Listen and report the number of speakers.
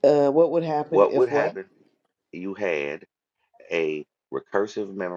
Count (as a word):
two